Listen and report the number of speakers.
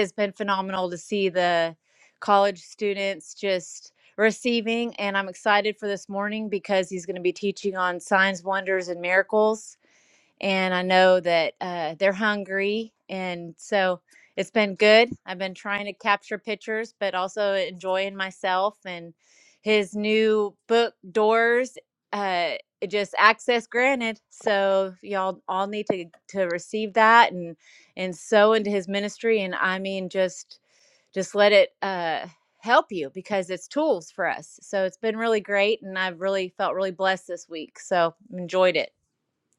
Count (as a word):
one